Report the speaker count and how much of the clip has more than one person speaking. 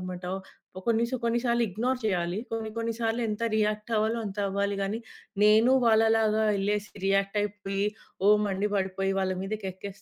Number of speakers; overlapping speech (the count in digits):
1, no overlap